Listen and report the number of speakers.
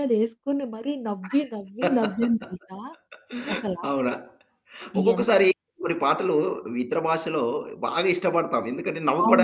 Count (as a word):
two